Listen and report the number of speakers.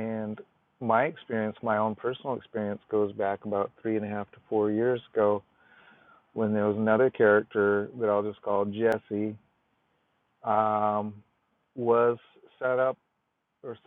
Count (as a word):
one